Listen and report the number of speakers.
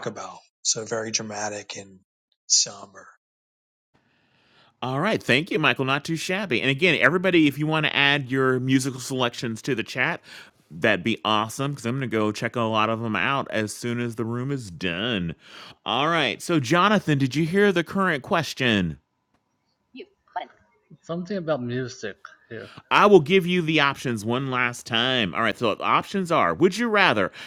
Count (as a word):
three